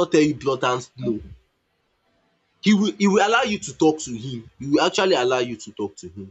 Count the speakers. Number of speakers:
one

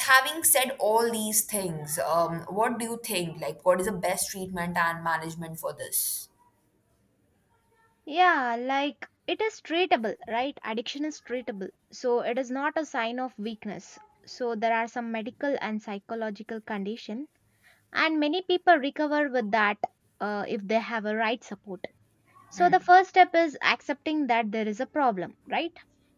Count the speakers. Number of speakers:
two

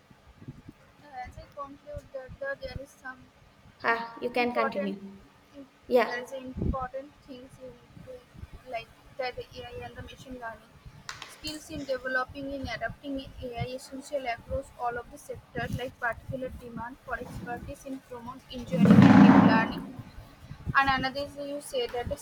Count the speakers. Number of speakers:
two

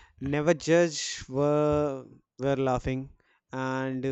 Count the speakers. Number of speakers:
one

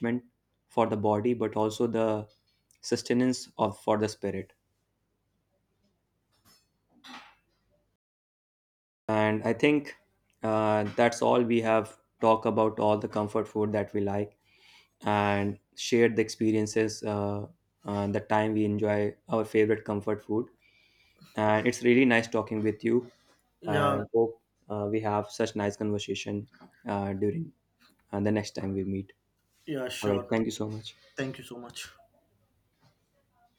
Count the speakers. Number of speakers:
two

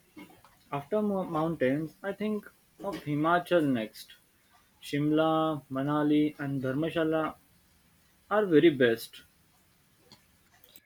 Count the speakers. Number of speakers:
one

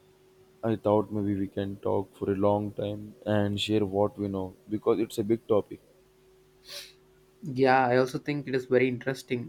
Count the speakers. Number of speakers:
two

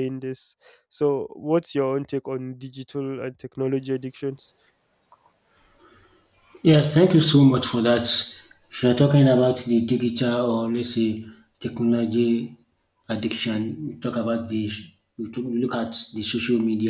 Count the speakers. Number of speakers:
two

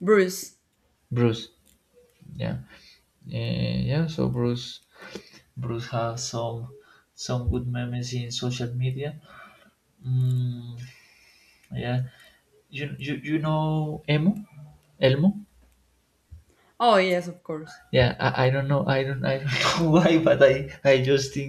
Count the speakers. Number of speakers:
two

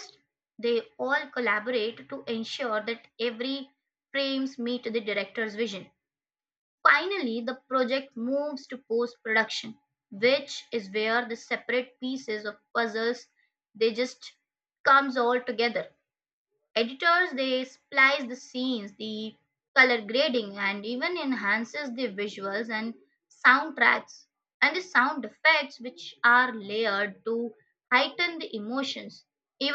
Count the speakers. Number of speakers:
one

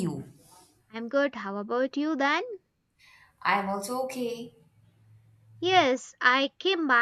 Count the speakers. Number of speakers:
two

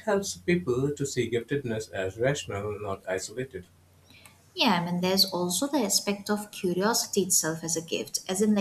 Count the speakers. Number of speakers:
two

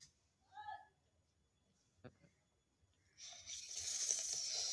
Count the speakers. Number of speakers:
zero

